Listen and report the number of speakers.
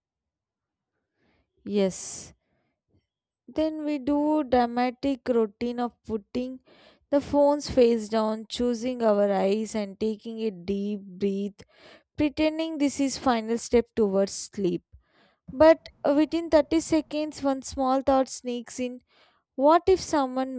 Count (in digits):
1